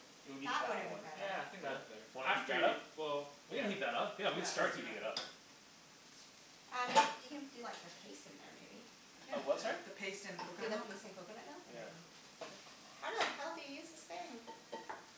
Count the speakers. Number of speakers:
4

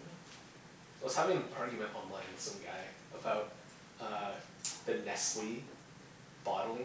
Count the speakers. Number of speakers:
1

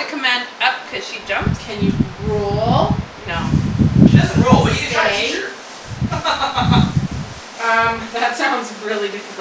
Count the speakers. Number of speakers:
3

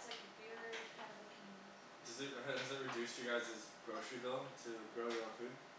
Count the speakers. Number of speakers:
2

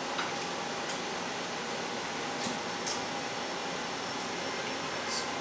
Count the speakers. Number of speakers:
0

